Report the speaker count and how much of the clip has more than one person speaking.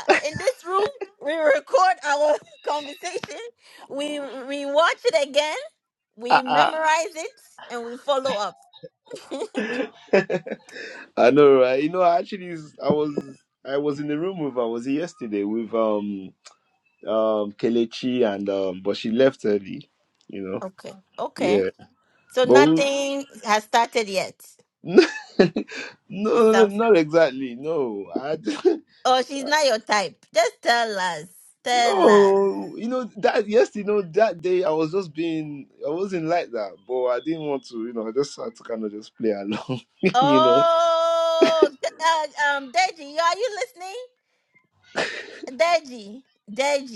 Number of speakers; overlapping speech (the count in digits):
2, about 6%